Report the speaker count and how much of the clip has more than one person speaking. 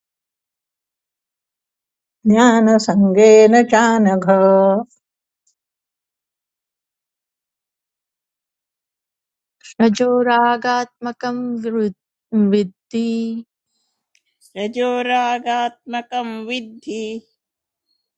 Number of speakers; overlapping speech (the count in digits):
3, no overlap